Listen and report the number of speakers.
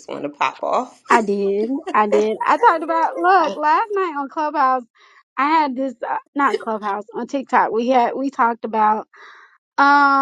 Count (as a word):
two